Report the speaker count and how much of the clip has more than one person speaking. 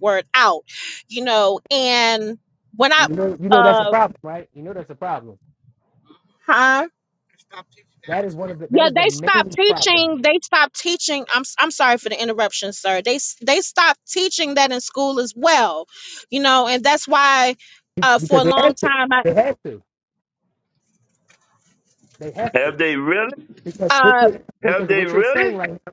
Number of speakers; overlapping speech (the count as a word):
three, about 16%